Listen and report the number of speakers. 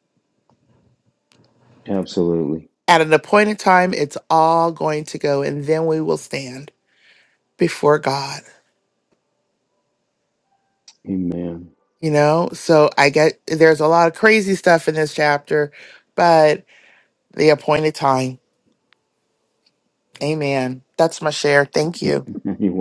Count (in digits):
2